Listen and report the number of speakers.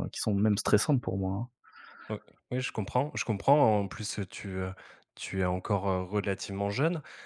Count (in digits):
2